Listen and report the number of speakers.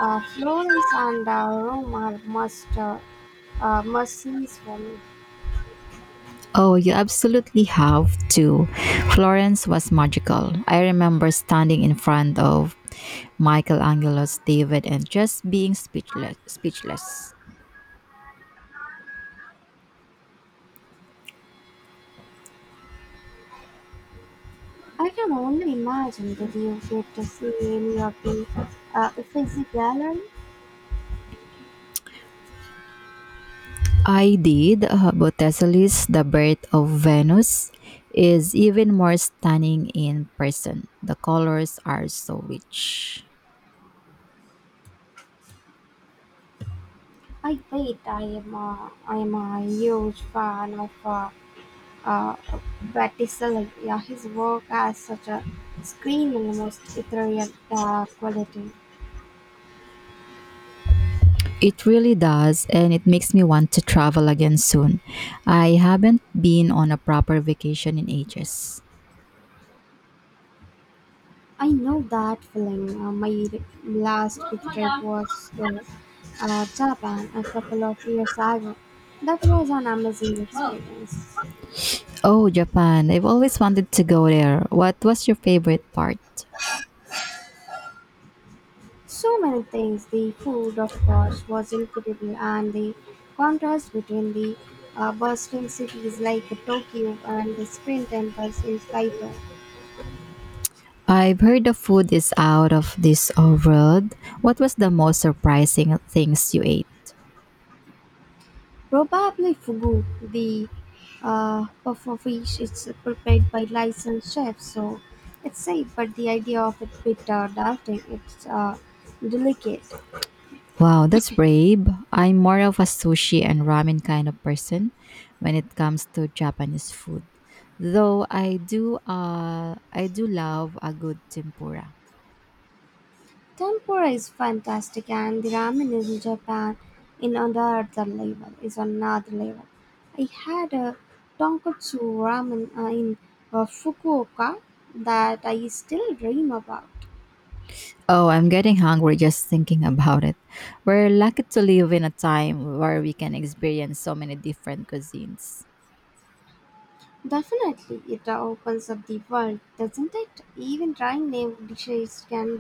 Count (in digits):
2